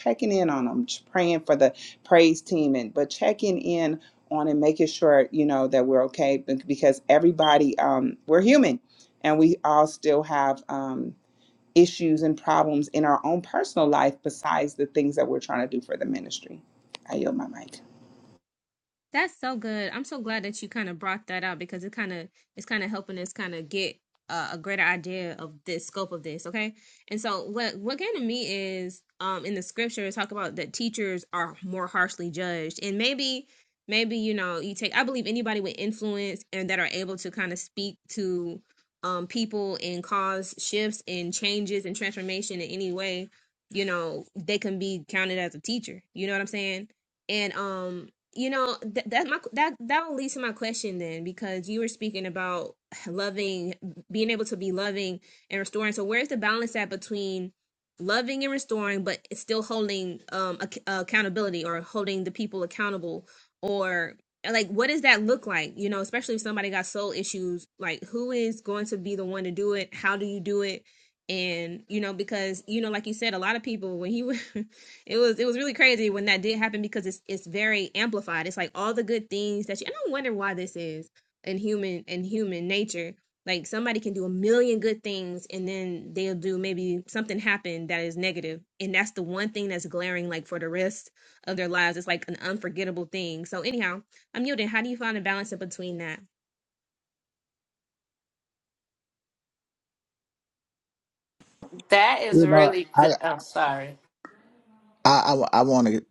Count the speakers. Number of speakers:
four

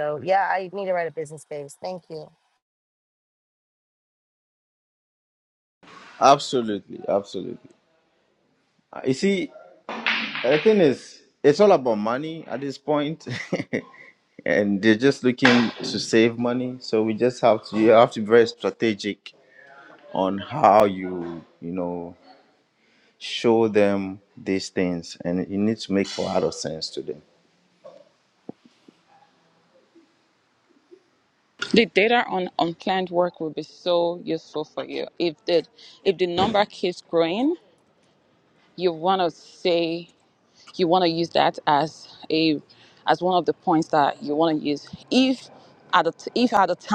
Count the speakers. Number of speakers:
three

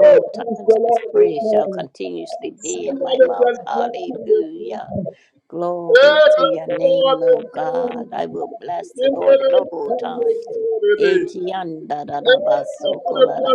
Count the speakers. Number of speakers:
two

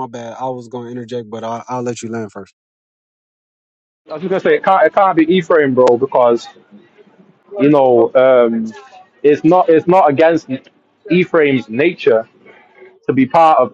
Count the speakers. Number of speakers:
two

